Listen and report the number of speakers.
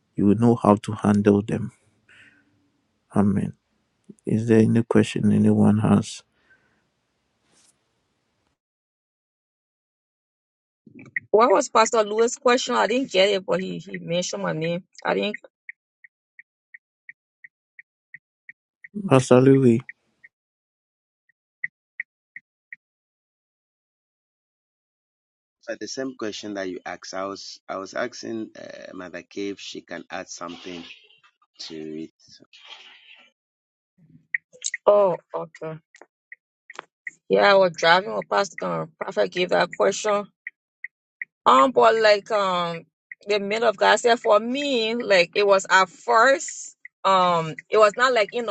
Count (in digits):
3